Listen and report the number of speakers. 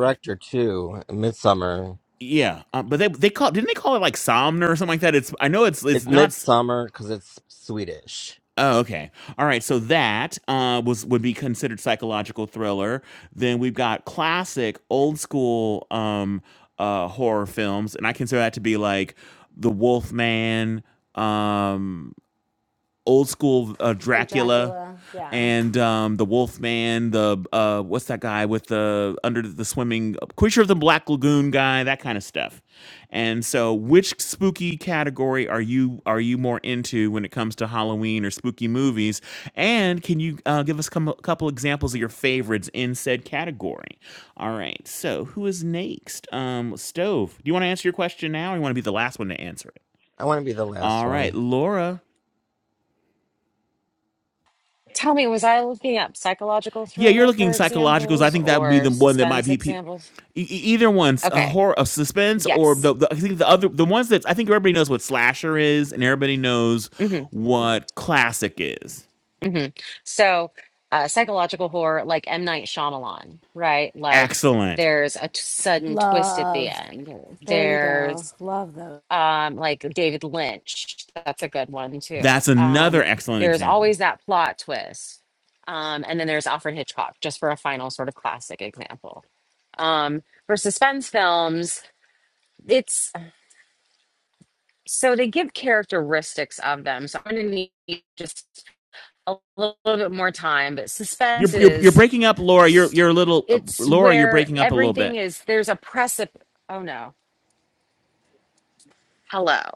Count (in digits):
4